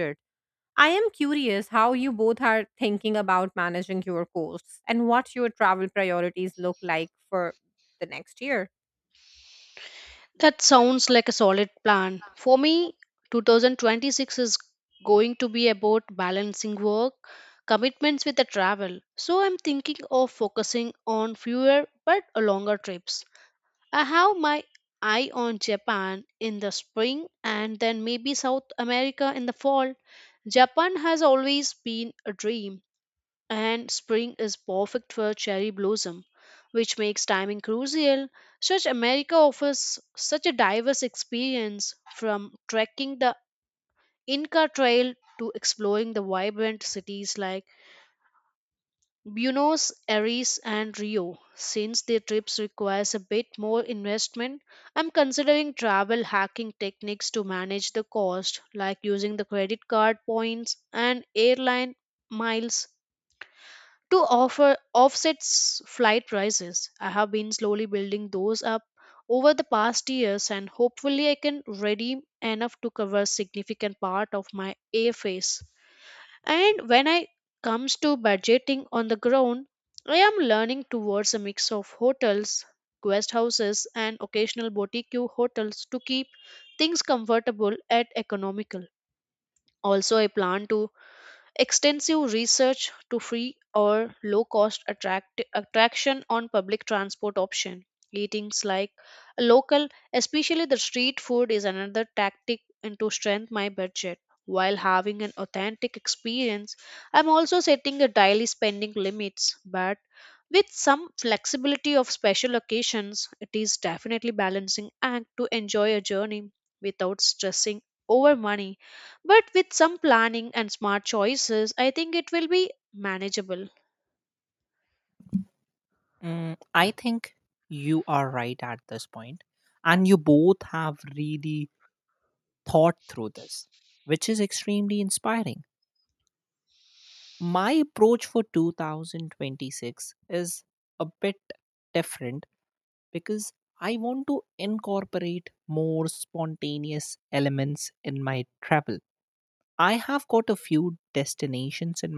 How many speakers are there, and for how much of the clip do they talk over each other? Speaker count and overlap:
3, no overlap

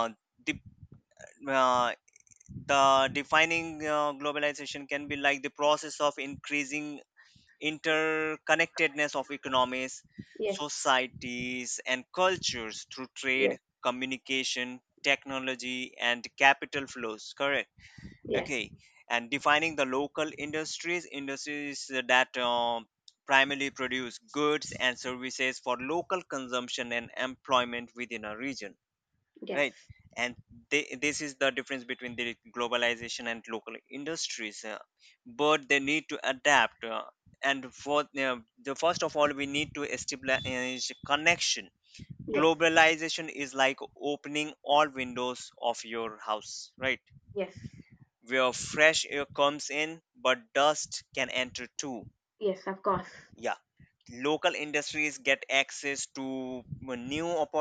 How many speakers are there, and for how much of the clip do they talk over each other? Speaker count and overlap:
2, about 1%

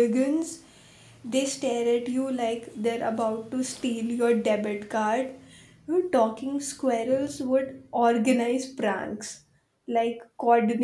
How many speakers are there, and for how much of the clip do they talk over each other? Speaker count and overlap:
1, no overlap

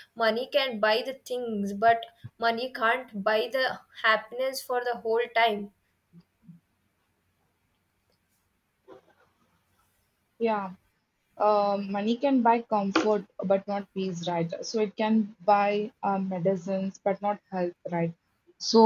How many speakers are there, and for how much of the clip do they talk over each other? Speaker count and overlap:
2, no overlap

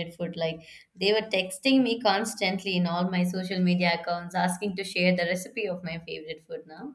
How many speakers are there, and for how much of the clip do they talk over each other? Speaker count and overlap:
1, no overlap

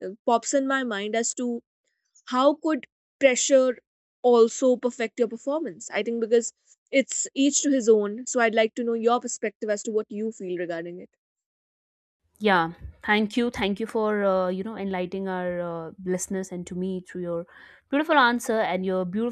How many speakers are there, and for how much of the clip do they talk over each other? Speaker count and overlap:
2, no overlap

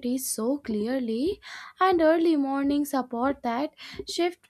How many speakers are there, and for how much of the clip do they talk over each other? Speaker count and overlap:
1, no overlap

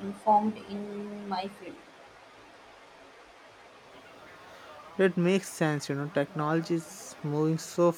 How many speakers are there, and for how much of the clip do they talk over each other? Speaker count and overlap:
2, no overlap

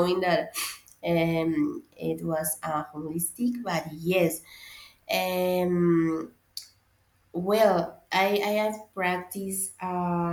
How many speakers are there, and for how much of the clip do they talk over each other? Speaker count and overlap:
1, no overlap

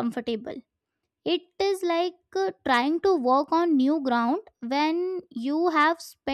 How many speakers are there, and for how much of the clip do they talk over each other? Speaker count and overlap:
1, no overlap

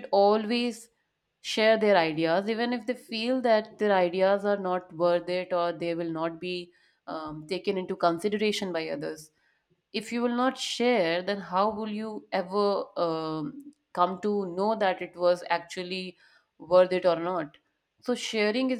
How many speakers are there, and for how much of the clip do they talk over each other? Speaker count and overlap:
1, no overlap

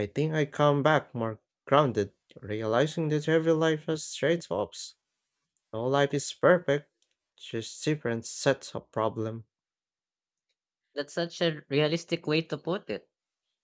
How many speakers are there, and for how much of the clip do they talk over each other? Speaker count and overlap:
2, no overlap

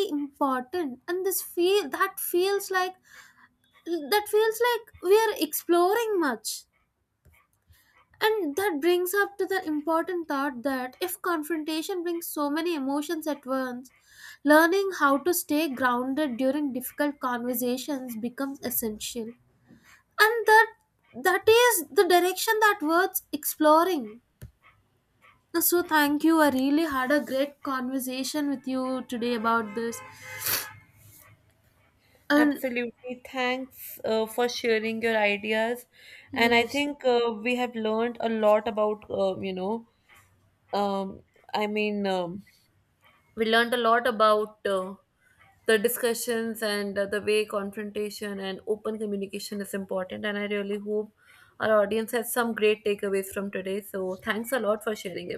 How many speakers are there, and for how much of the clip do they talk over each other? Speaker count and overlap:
2, about 1%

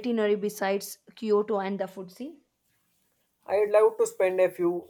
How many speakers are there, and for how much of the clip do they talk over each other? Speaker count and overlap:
2, no overlap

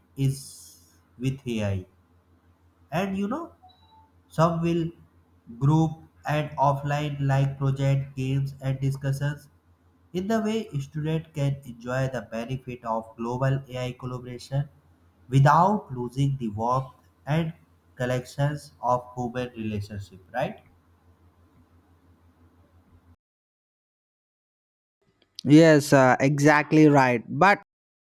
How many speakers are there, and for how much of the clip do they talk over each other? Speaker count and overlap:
2, no overlap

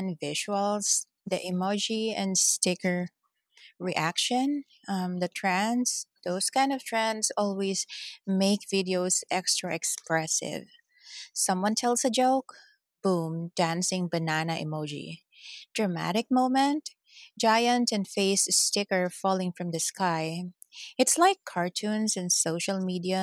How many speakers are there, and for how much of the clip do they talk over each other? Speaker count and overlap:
1, no overlap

